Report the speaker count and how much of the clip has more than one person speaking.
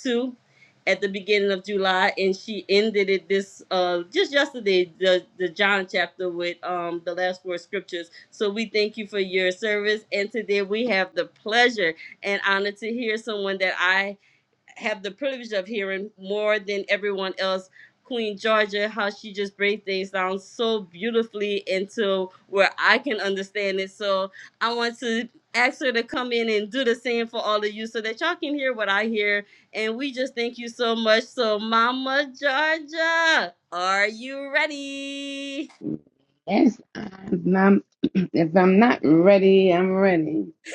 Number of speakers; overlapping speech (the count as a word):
two, no overlap